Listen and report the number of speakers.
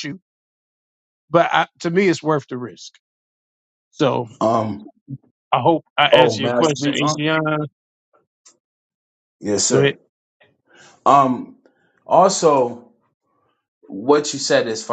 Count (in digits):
2